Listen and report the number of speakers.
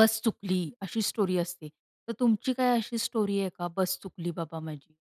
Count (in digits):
1